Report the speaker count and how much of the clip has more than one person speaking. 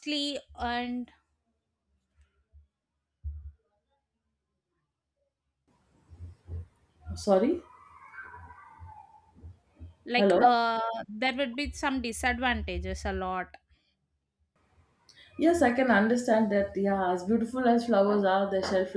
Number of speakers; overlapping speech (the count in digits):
2, about 1%